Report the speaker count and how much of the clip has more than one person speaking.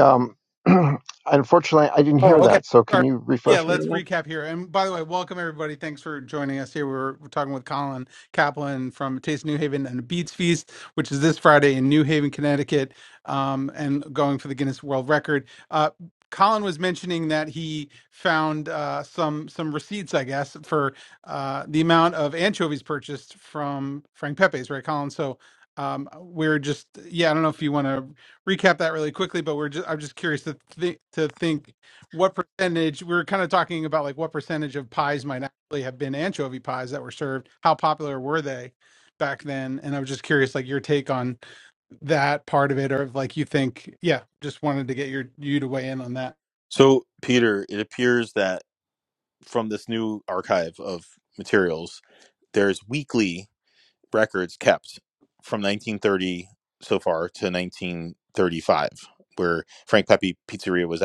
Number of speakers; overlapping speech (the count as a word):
three, about 2%